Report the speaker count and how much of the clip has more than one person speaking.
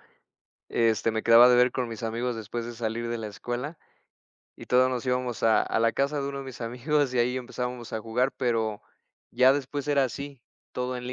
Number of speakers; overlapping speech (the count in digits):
1, no overlap